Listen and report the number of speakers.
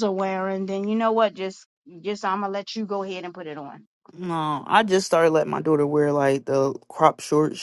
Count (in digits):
2